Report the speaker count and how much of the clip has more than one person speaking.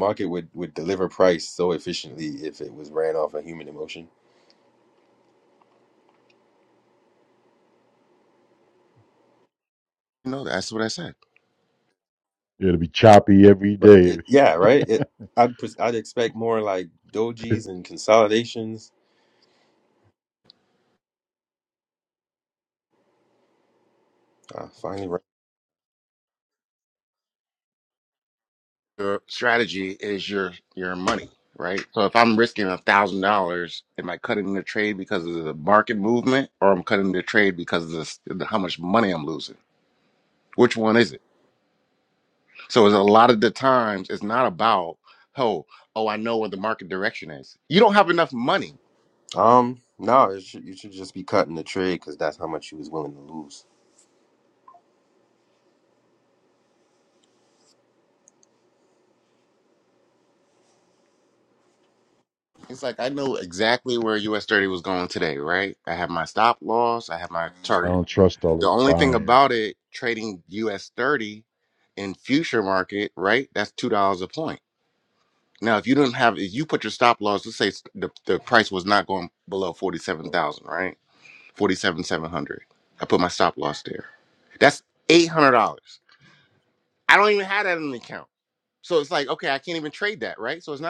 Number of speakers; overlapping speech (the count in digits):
3, about 1%